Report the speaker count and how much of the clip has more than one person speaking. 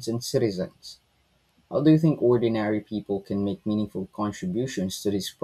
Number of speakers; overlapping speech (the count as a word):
one, no overlap